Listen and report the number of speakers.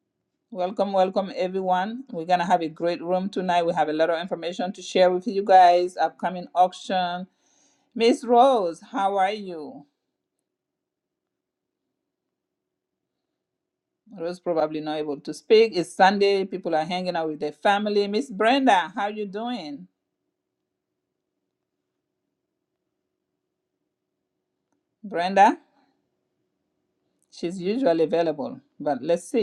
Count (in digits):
1